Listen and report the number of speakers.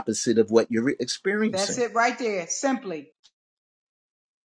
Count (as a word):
two